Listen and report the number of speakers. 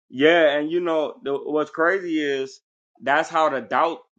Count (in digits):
1